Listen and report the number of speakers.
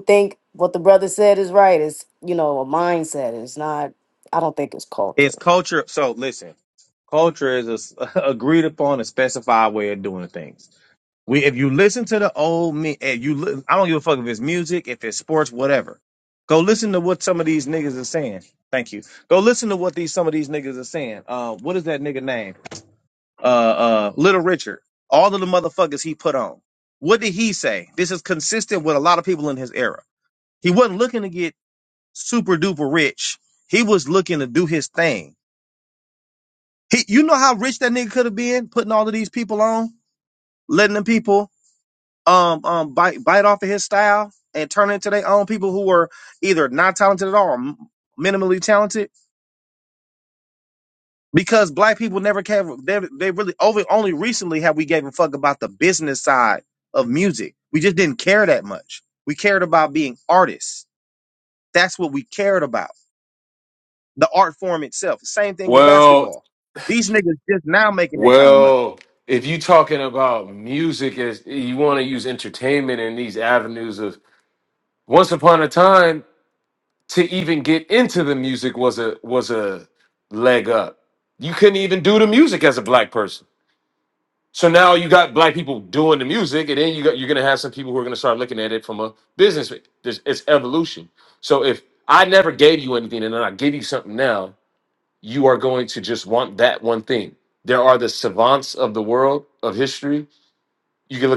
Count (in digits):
3